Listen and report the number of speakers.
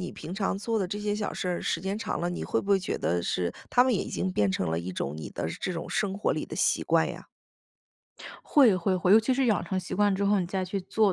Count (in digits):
2